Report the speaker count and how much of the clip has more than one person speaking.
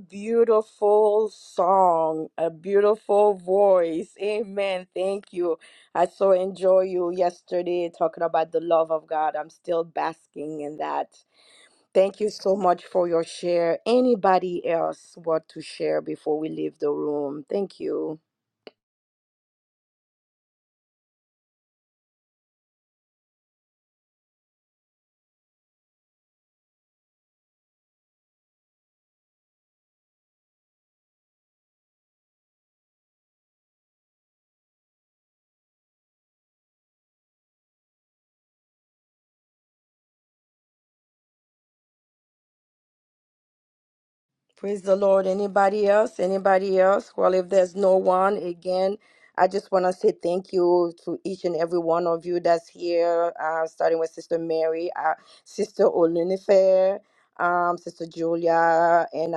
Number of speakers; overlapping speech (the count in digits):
1, no overlap